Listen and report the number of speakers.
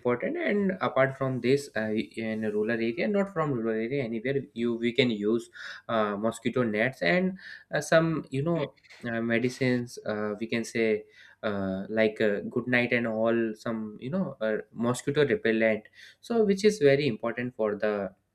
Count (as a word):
one